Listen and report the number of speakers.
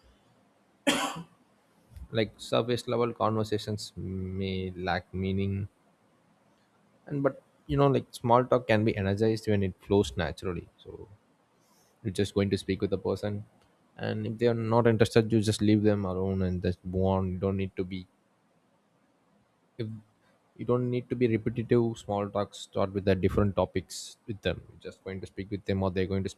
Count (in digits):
1